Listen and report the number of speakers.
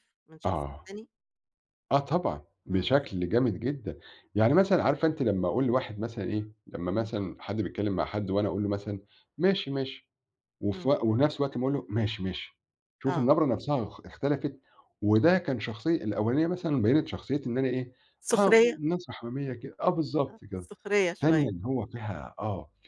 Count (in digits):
2